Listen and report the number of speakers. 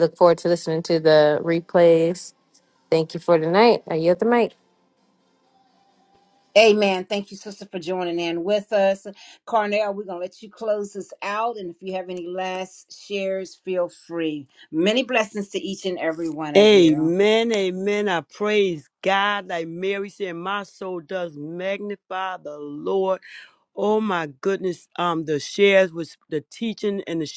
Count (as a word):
three